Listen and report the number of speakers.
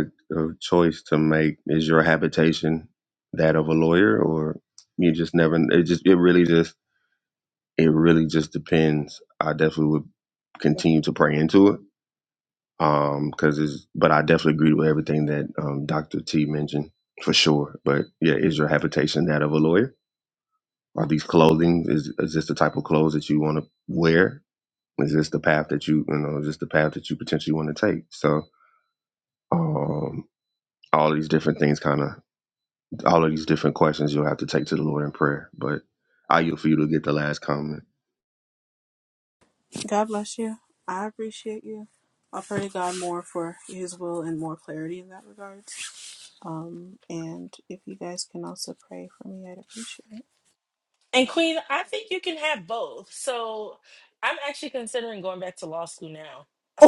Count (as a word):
three